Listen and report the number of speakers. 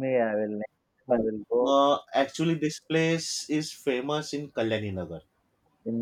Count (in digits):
2